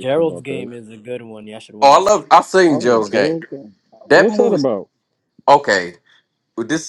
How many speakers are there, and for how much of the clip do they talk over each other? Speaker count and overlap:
3, about 35%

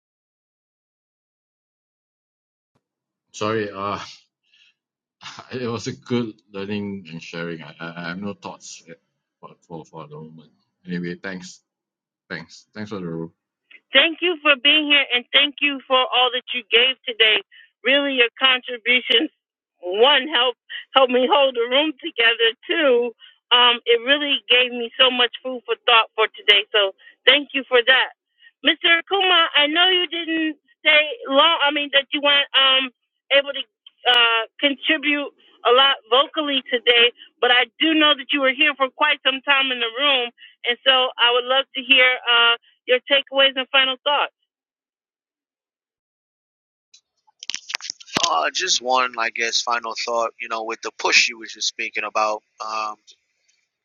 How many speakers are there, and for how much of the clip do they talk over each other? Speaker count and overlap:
3, no overlap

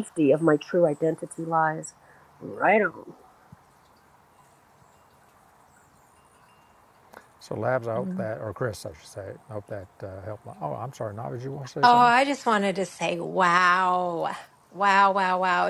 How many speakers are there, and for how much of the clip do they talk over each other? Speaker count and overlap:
3, about 3%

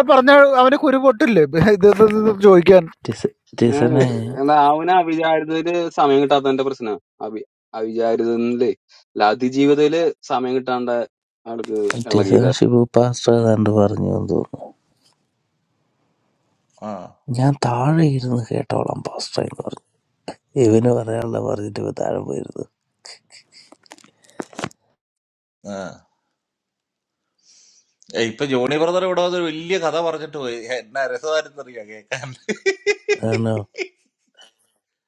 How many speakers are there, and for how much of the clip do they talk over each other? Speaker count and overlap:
4, about 2%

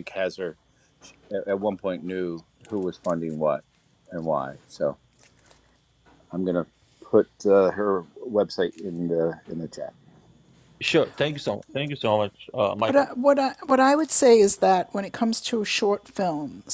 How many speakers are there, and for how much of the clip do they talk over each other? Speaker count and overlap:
3, about 1%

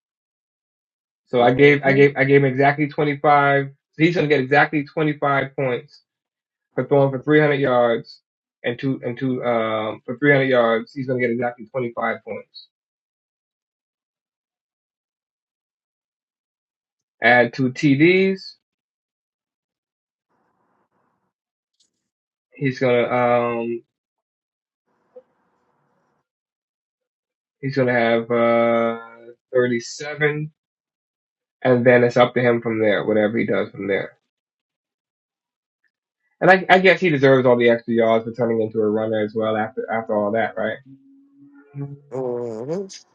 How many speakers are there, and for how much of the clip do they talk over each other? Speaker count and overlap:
2, about 2%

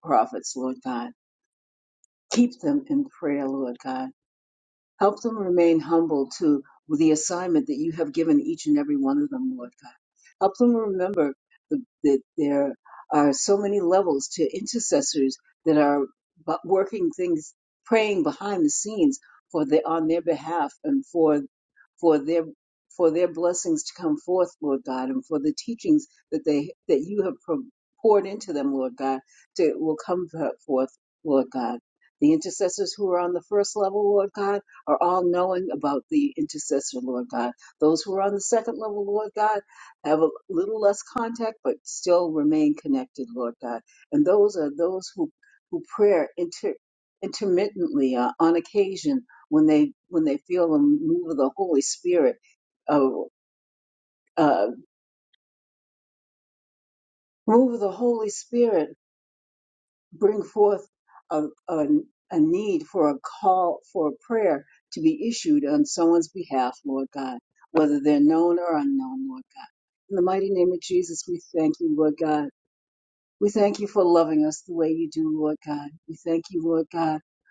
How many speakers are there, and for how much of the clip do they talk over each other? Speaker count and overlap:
1, no overlap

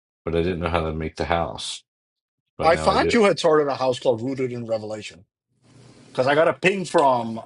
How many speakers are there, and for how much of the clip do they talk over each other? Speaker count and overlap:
2, about 8%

